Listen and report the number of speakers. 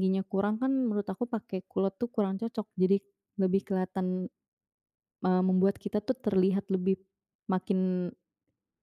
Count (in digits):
1